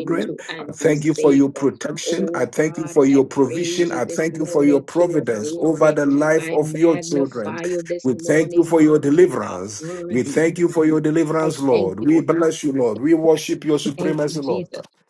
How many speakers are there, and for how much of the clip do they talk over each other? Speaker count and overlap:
2, about 70%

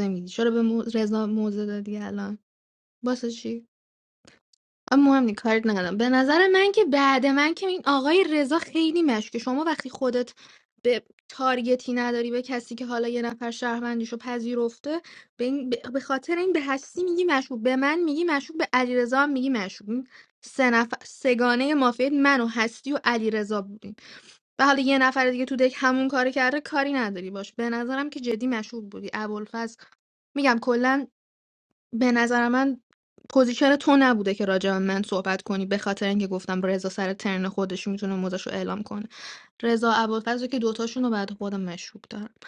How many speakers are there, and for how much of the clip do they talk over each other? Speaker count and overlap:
1, no overlap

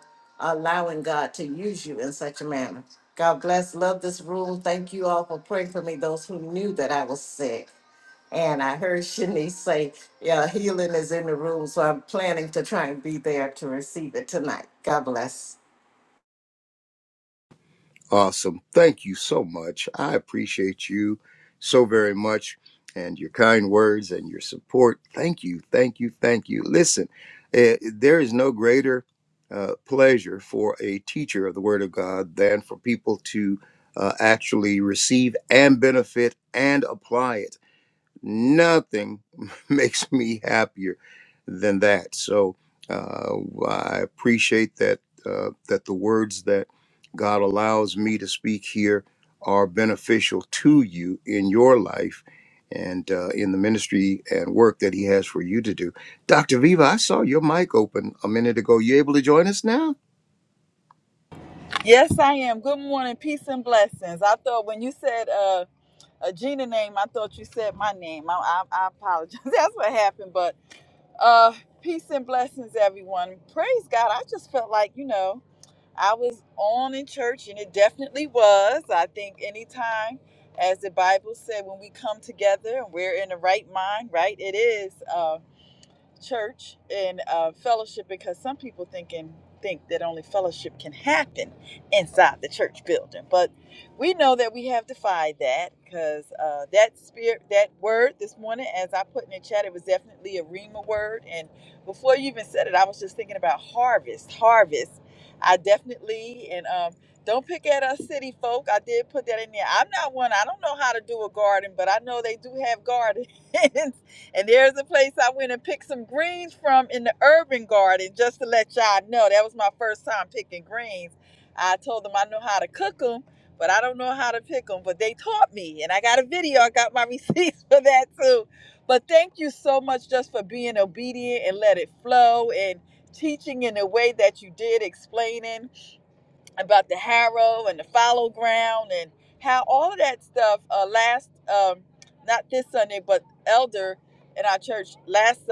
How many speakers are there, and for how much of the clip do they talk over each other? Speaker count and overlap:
3, no overlap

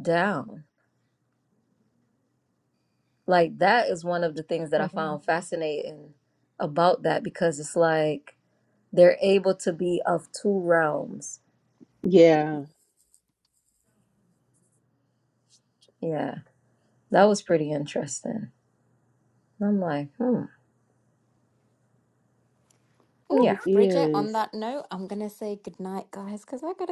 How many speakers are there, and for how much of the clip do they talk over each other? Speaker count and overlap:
3, about 4%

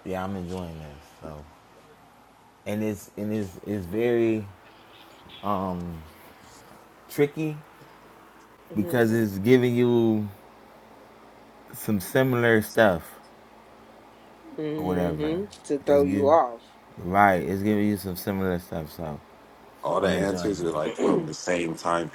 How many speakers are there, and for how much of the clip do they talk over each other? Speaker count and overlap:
3, about 12%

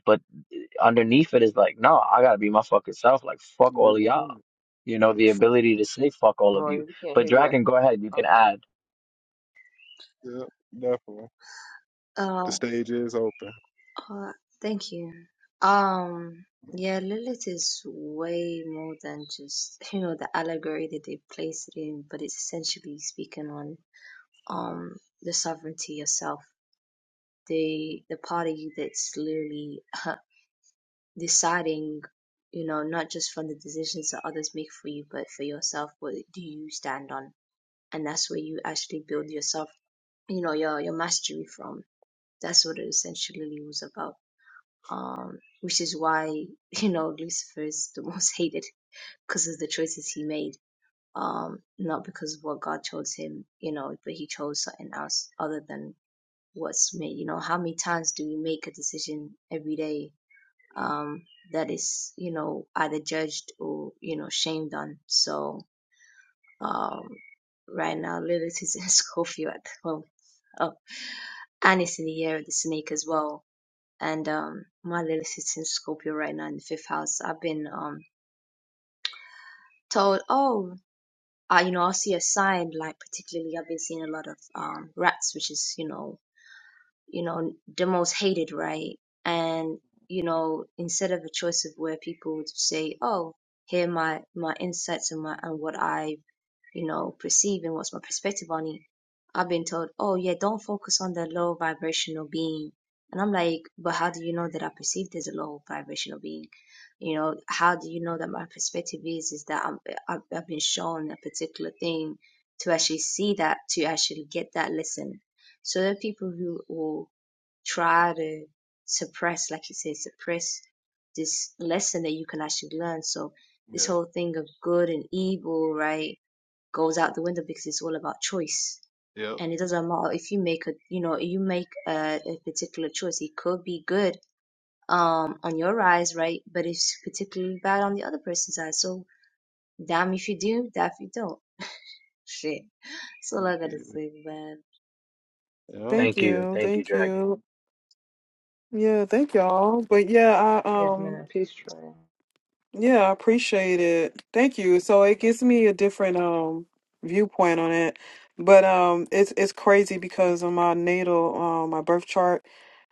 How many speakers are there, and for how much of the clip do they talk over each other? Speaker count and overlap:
5, about 3%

